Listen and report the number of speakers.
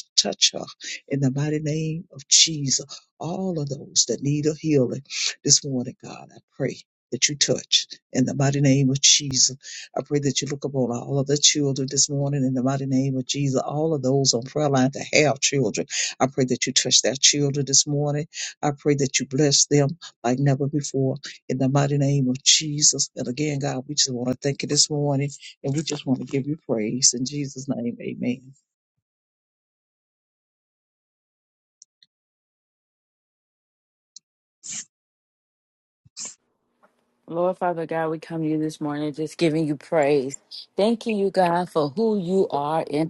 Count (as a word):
two